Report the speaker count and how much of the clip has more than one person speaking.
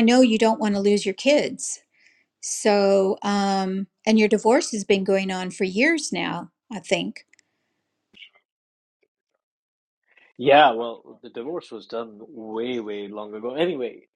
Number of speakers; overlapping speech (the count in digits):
2, no overlap